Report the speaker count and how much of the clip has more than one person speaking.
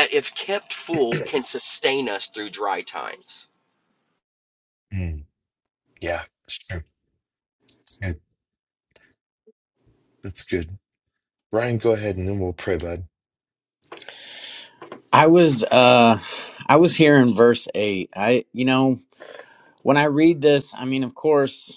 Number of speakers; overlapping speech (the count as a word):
three, no overlap